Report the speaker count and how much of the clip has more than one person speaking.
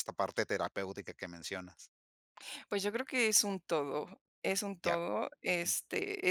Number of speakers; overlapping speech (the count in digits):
2, about 2%